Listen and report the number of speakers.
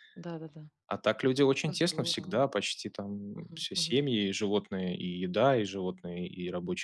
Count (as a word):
two